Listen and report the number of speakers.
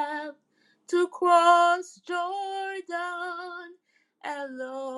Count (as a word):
one